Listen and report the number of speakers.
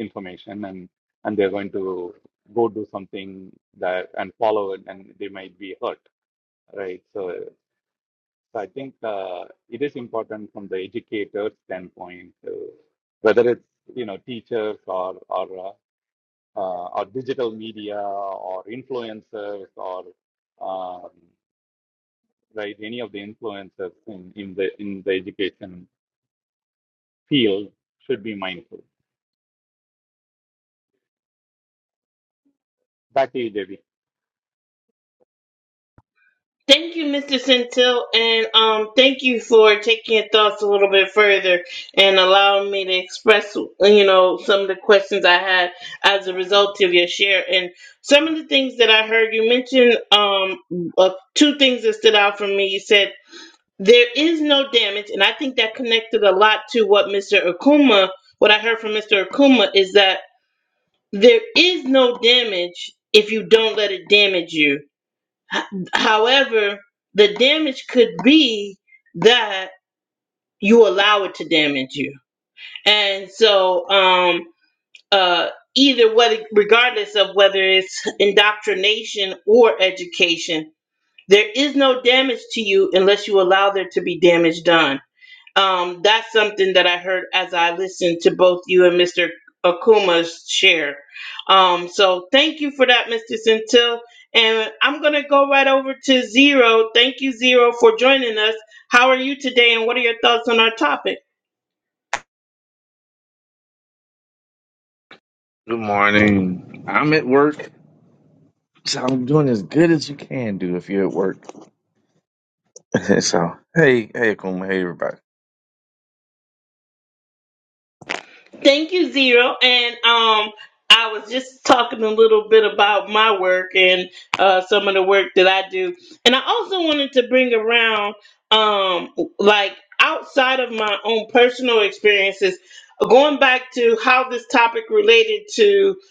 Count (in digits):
3